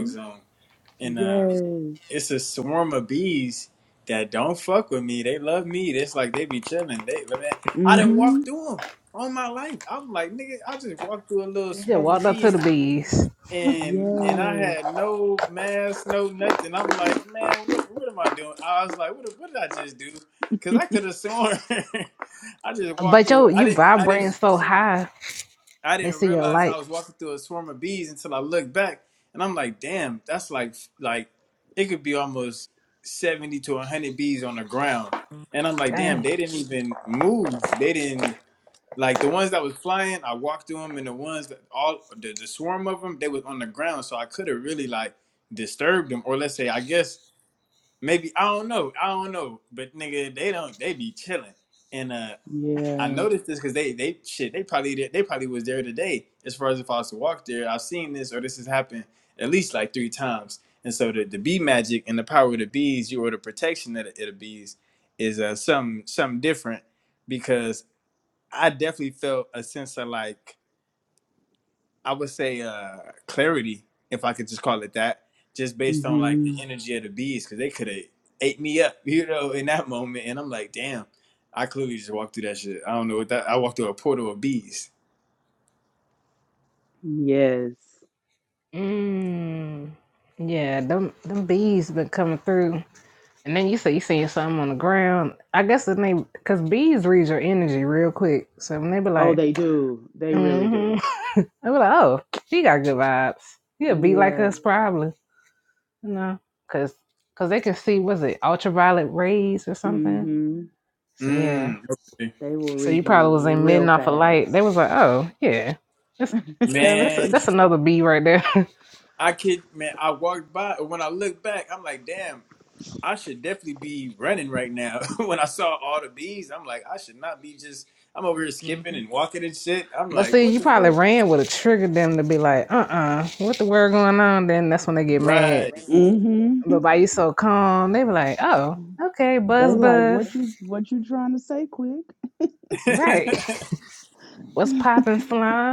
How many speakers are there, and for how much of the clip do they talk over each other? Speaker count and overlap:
3, about 10%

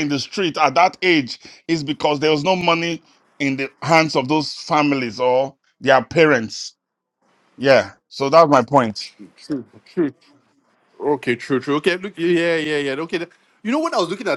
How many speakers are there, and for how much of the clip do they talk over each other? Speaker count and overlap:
2, no overlap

